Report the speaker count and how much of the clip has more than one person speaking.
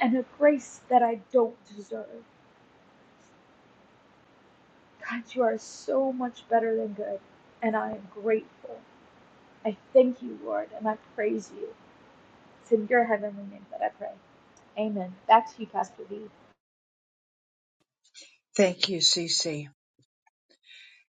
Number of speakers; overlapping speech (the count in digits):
2, no overlap